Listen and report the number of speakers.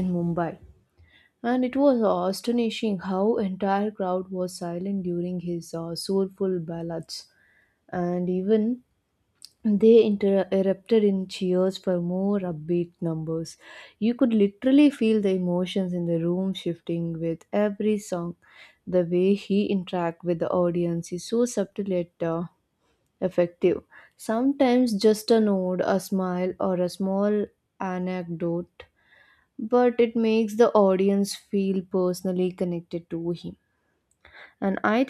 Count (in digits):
1